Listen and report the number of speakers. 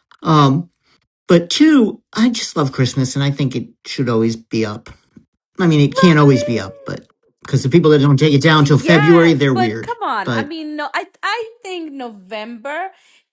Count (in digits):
2